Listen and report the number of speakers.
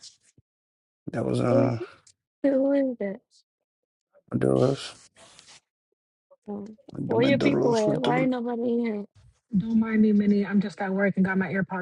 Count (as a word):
three